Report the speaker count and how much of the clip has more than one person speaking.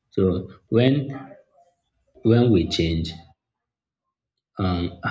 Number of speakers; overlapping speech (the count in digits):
1, no overlap